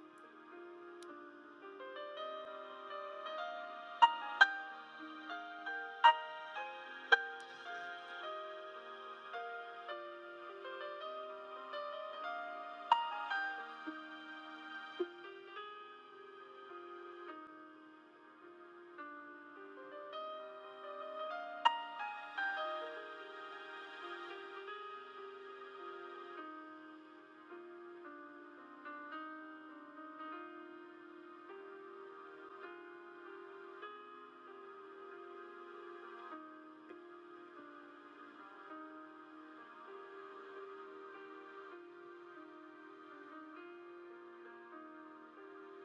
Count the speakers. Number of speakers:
0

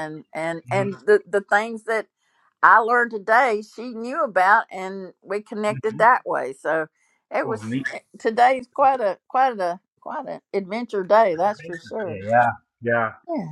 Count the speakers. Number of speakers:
2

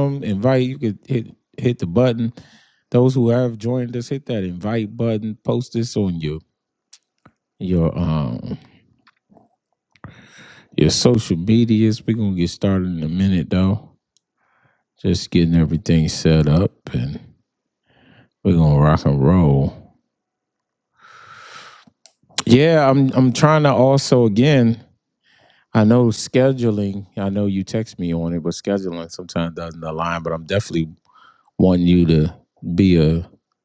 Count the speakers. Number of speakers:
1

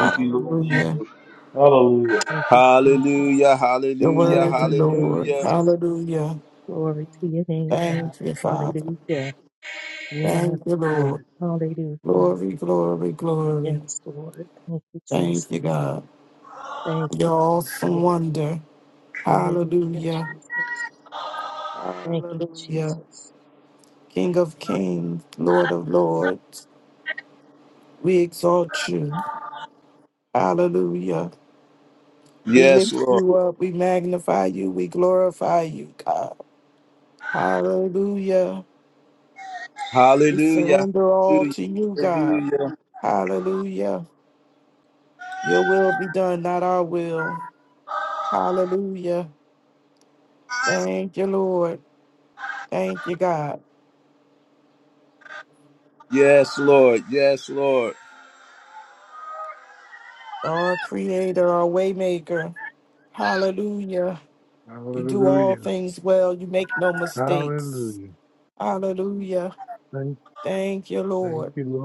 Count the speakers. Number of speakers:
5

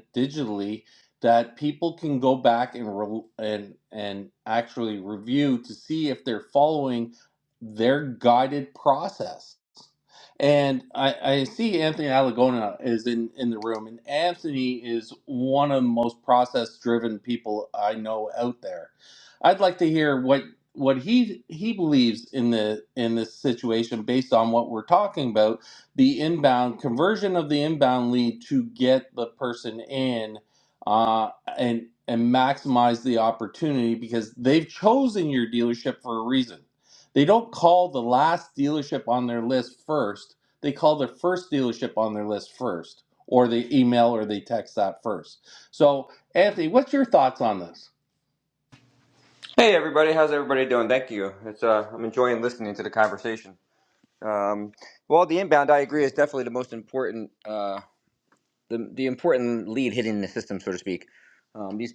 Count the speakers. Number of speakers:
2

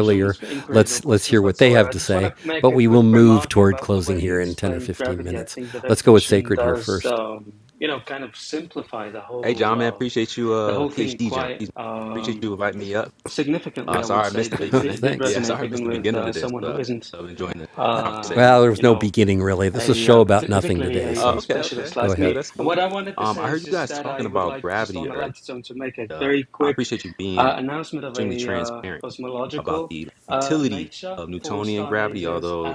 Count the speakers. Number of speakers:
3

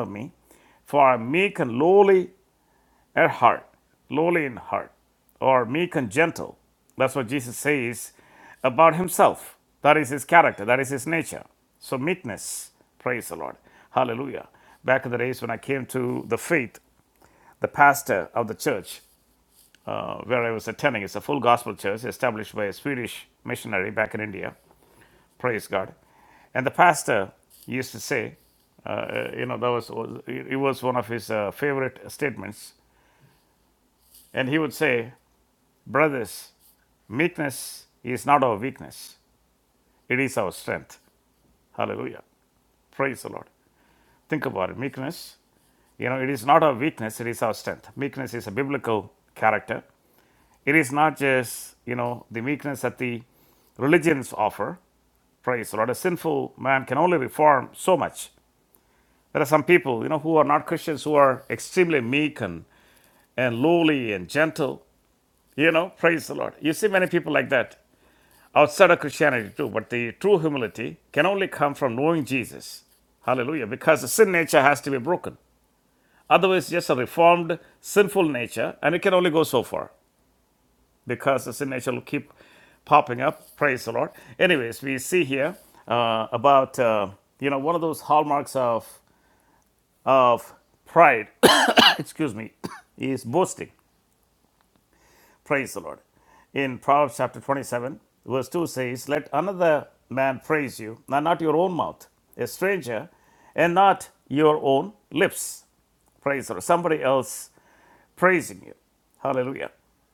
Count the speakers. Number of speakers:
1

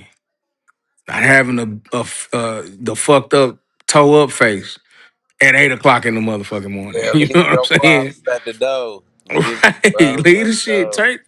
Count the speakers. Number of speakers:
2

